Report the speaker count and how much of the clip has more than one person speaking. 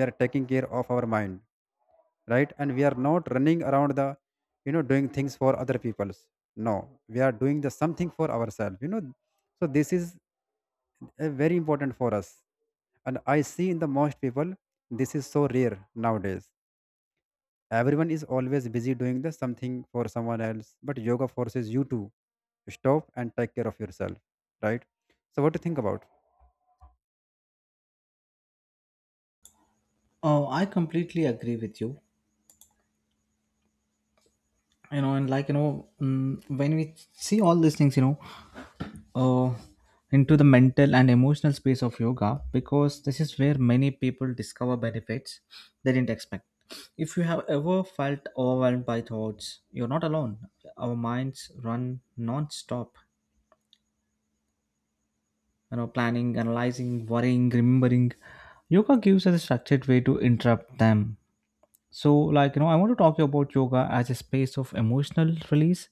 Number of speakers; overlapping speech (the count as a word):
two, no overlap